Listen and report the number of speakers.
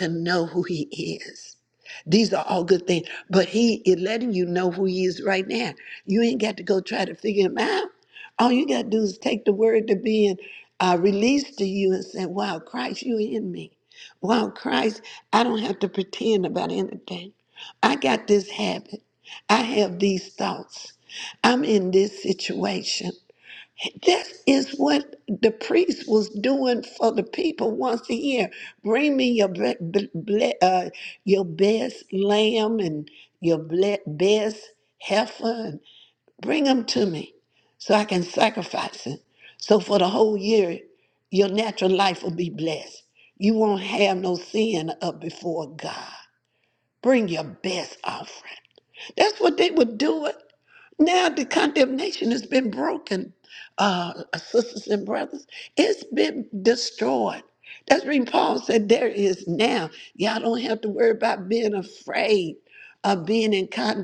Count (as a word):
one